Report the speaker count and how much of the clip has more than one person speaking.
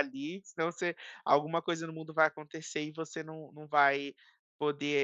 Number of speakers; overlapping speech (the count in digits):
1, no overlap